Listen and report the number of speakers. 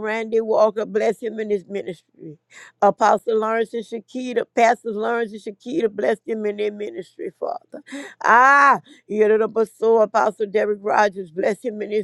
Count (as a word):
one